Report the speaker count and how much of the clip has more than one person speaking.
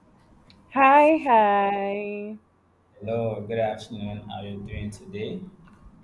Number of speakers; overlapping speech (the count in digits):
2, no overlap